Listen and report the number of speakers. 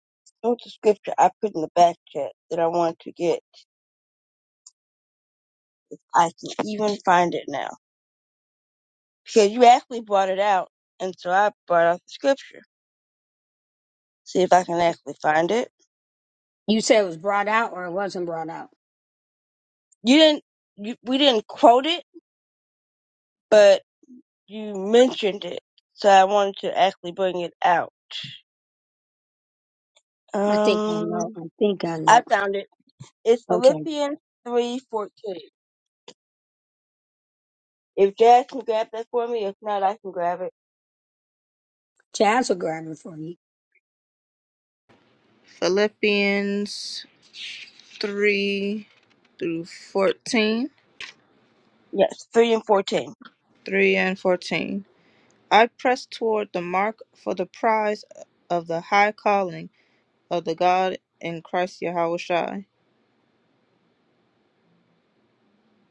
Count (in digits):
3